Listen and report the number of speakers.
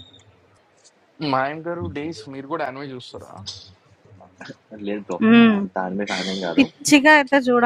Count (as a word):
three